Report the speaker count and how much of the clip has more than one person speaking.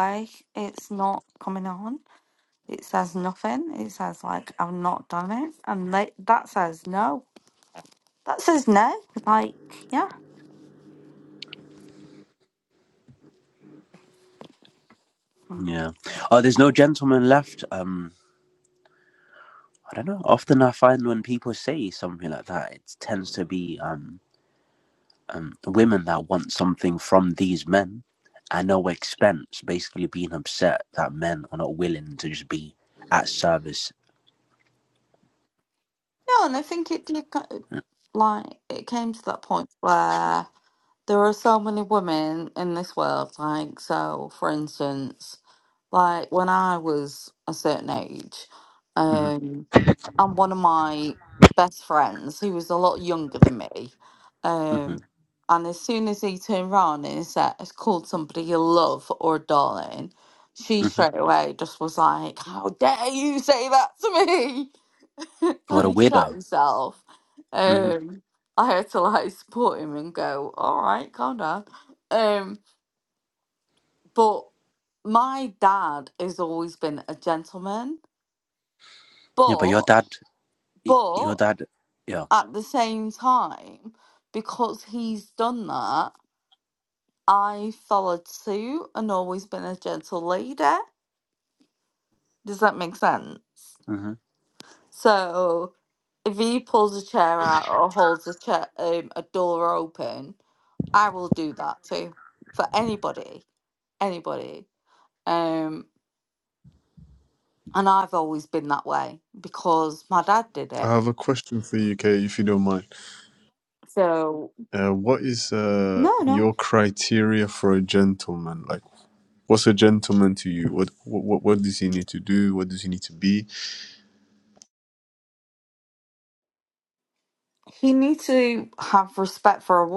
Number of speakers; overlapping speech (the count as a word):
three, about 2%